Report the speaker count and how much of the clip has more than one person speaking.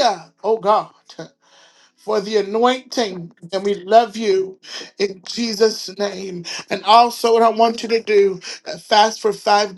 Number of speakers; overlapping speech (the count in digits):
1, no overlap